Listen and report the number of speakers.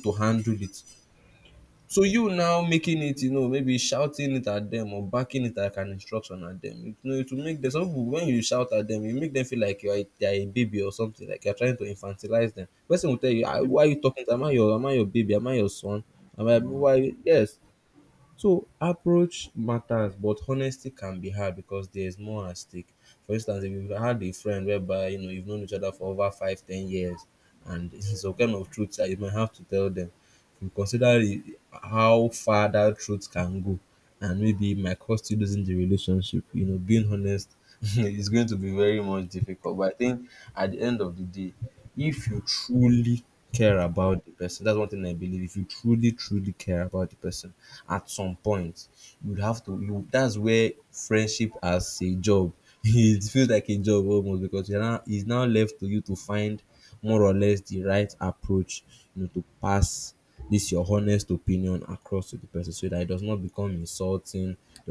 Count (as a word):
one